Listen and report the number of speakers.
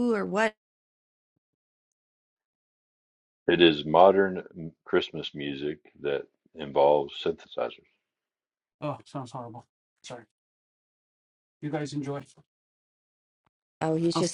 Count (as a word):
three